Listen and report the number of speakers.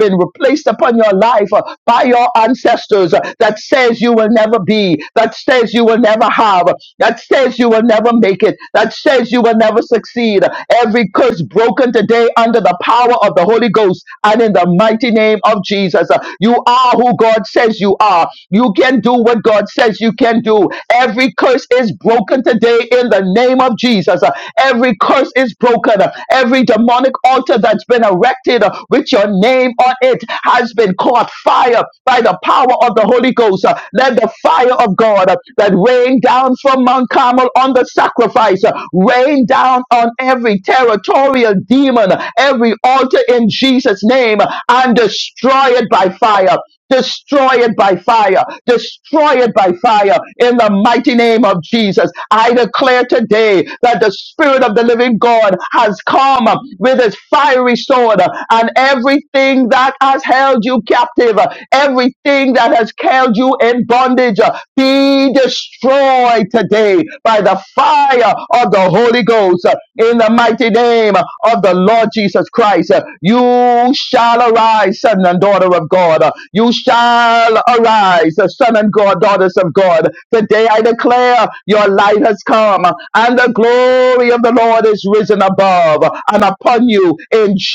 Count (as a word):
one